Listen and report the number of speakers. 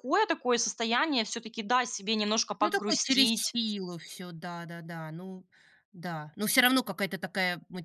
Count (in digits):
2